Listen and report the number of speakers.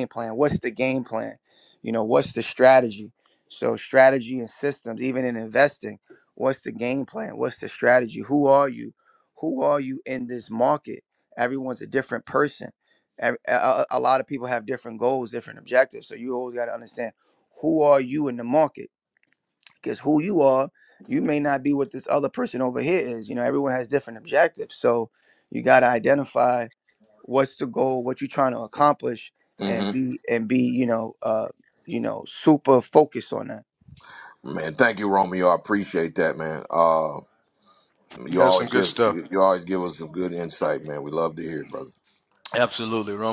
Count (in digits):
3